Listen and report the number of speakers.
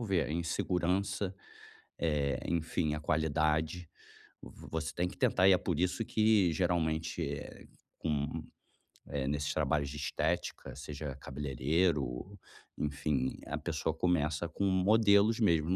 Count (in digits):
1